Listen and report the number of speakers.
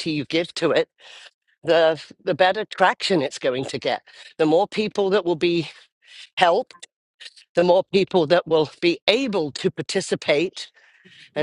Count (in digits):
1